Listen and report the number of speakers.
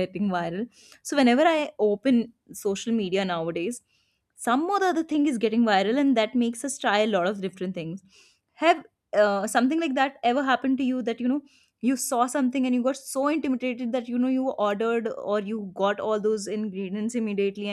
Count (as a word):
one